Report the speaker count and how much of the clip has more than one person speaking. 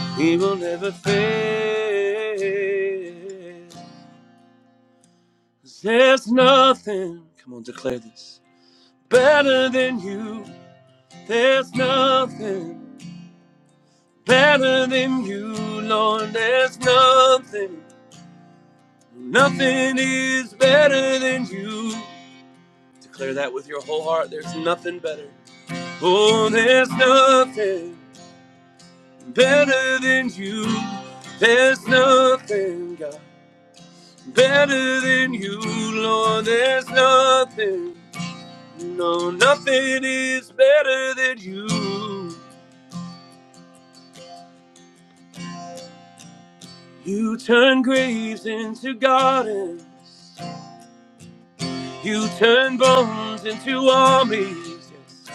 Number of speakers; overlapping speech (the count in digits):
1, no overlap